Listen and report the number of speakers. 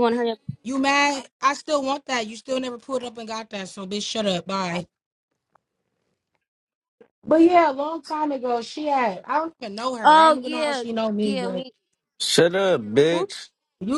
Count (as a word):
three